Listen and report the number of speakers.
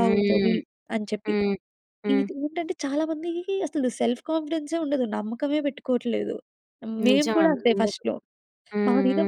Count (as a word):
two